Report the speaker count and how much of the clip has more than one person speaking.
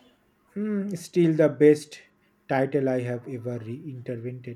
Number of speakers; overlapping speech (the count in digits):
1, no overlap